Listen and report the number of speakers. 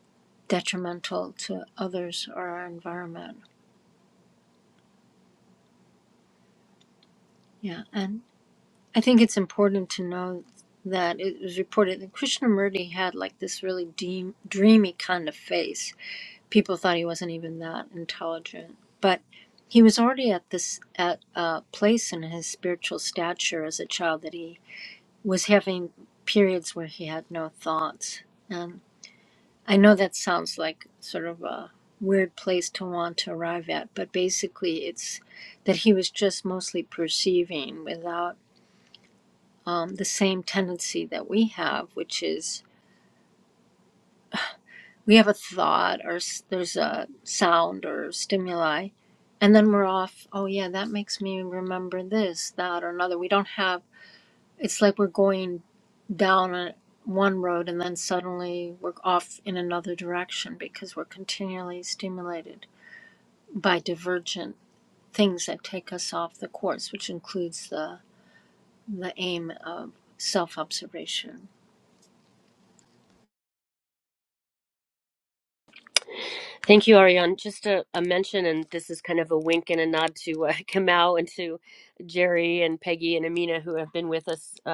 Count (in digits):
2